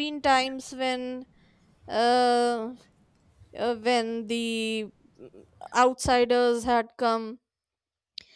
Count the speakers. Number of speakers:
1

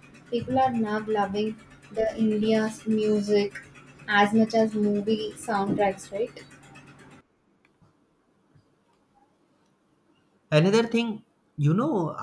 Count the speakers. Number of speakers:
2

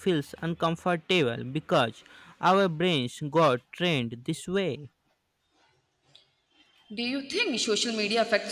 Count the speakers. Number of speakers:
2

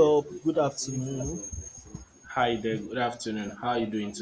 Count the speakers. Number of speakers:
2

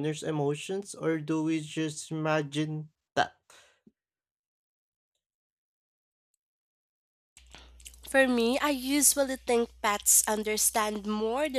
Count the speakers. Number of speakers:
2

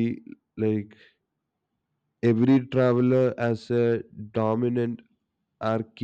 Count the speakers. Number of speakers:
1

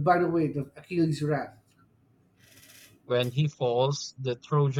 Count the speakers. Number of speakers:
2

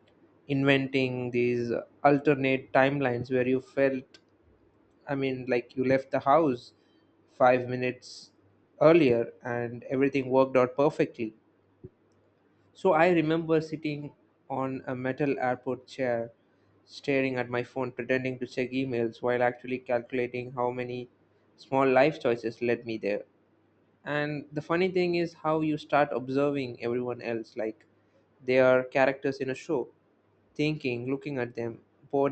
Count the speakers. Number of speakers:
1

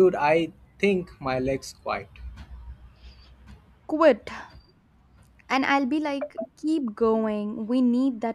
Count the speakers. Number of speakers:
2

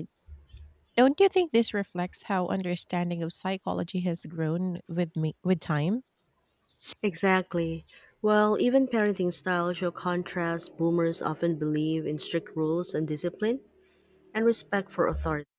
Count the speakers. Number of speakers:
2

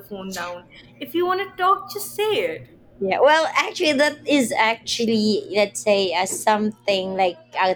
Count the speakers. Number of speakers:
2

